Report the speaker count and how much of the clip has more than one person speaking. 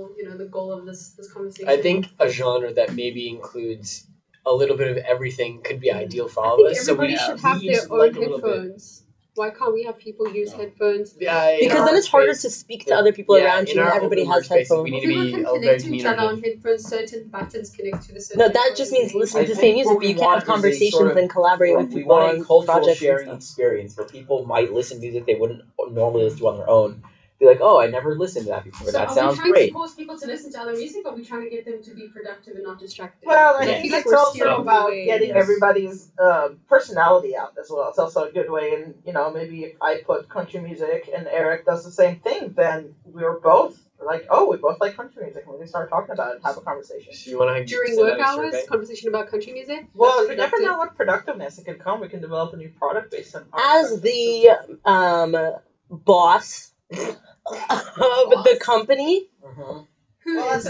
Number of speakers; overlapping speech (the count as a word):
five, about 31%